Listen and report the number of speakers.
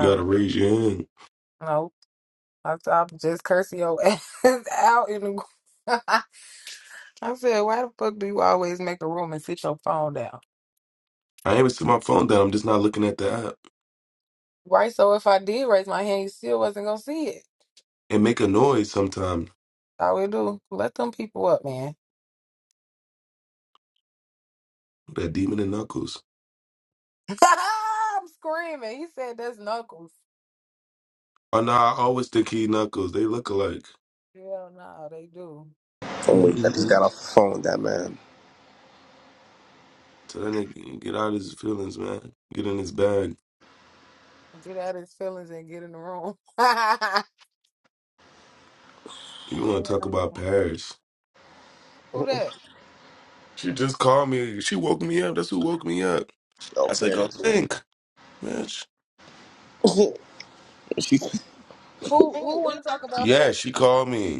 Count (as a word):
three